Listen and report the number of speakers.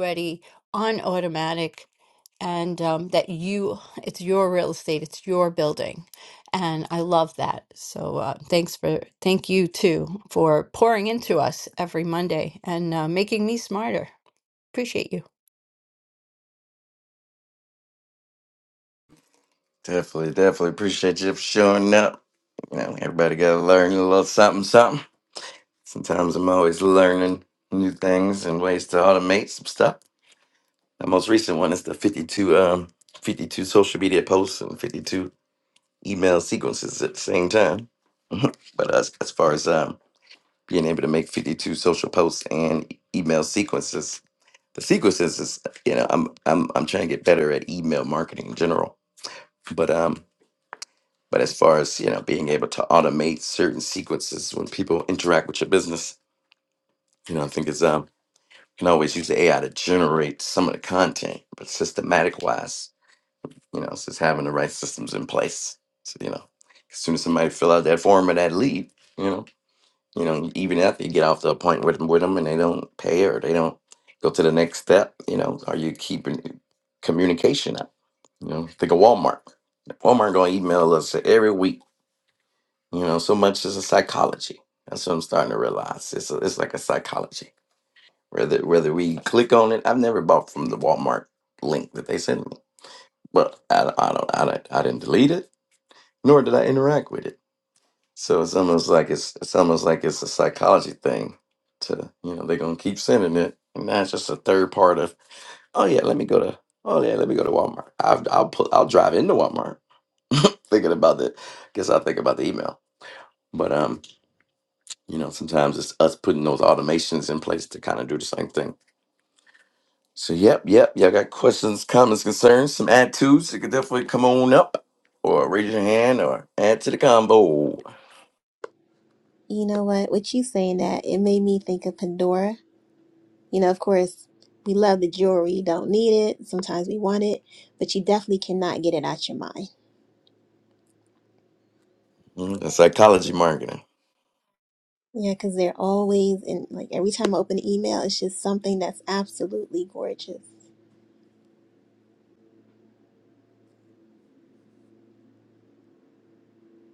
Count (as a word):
three